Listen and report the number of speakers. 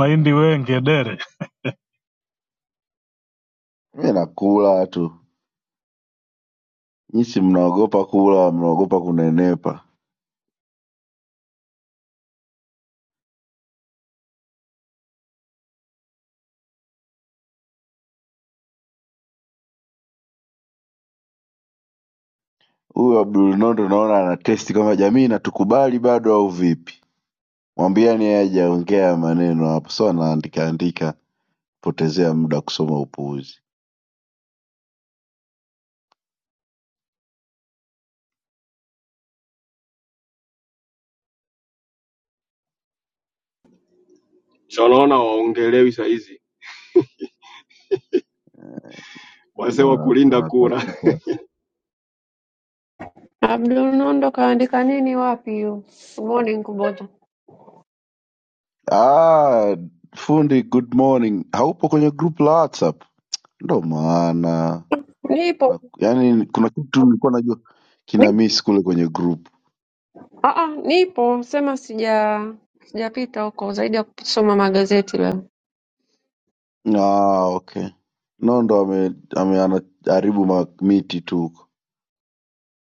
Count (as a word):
four